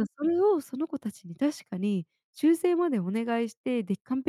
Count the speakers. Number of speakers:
one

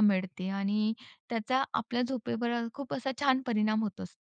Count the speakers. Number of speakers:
one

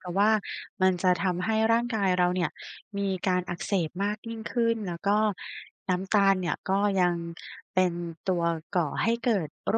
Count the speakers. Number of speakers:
one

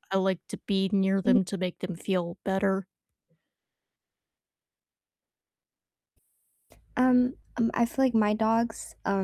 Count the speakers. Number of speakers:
two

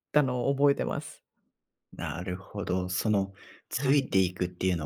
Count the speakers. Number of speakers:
two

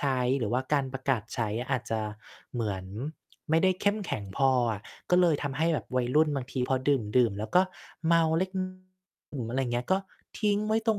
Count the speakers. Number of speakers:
one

